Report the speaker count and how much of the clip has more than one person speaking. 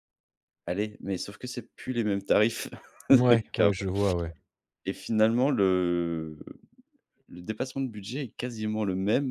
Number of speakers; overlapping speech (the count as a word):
two, about 2%